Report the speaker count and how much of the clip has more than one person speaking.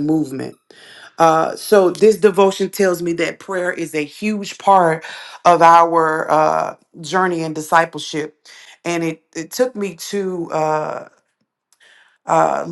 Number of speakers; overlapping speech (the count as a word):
one, no overlap